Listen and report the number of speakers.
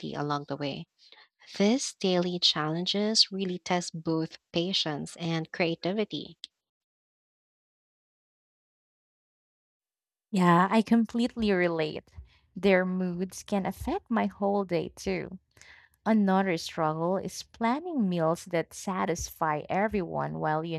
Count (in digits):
2